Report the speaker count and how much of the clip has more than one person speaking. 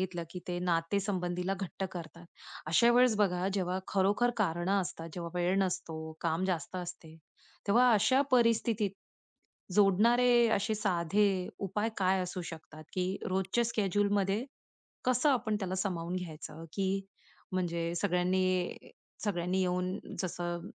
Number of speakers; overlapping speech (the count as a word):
one, no overlap